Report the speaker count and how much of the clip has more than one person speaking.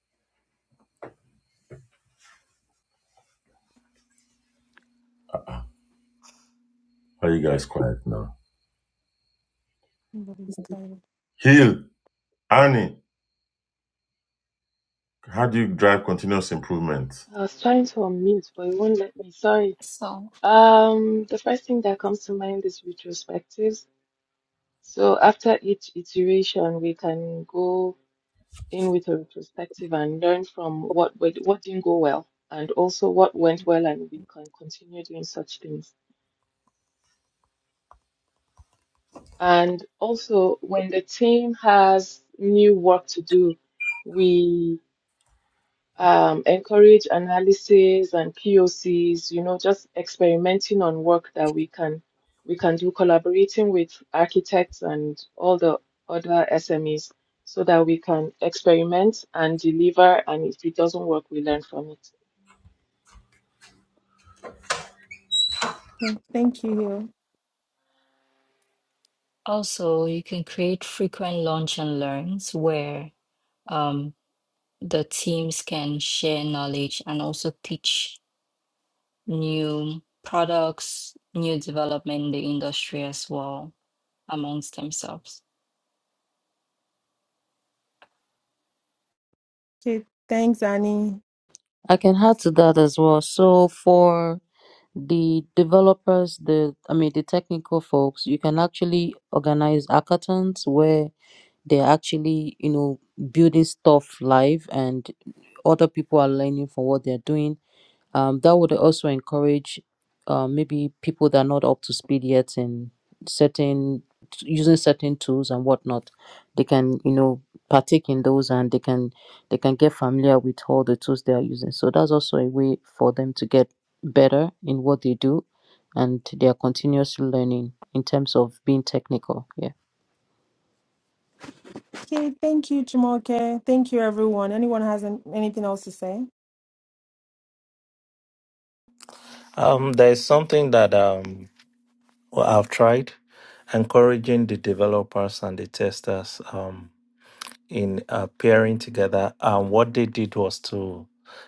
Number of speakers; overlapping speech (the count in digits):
6, no overlap